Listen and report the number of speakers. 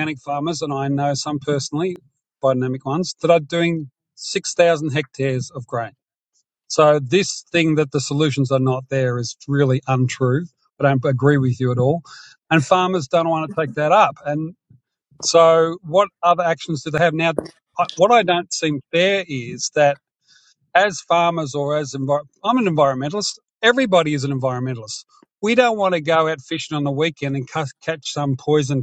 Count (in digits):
1